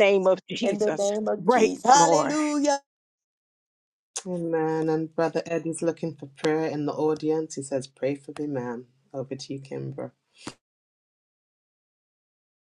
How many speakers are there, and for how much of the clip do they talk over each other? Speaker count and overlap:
3, about 11%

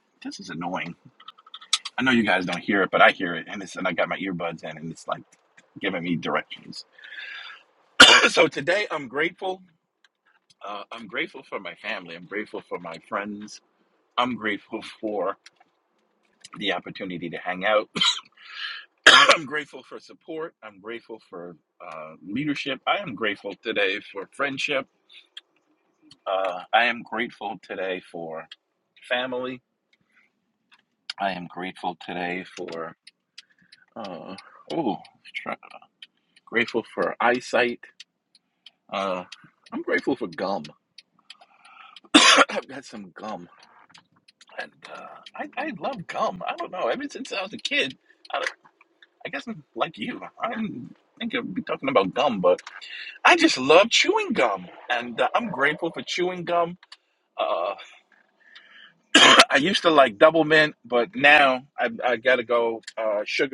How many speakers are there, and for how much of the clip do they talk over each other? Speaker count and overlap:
1, no overlap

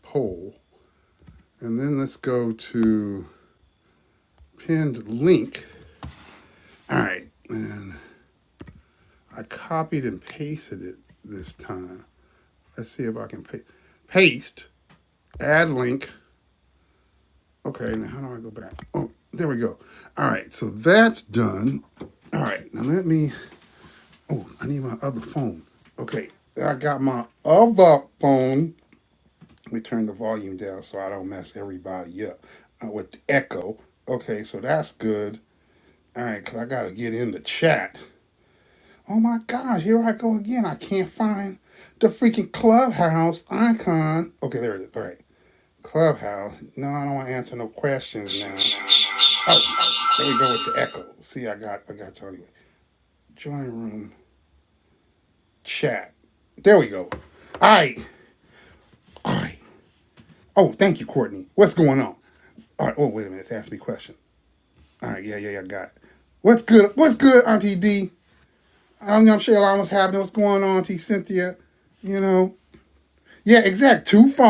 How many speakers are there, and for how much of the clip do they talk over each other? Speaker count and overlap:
1, no overlap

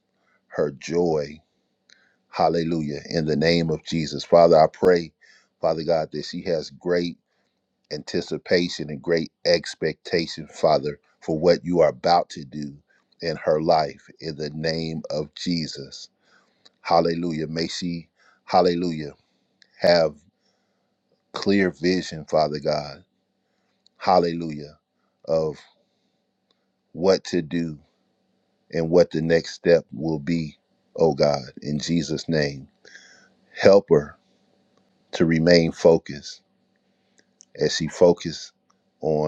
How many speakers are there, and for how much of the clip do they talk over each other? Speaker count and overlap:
1, no overlap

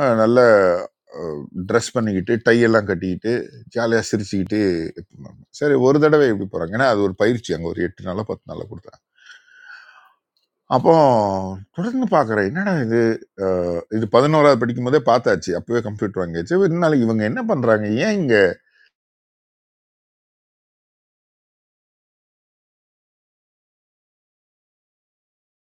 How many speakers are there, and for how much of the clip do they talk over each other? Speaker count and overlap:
1, no overlap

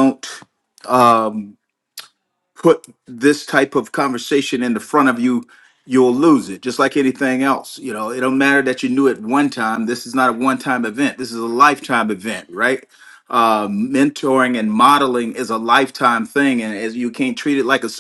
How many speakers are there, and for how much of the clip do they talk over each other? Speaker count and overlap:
1, no overlap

